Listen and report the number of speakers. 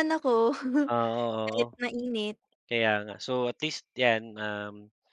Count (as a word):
two